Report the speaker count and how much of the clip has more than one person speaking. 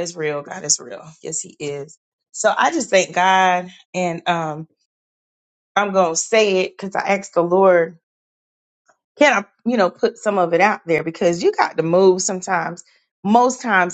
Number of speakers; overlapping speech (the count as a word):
one, no overlap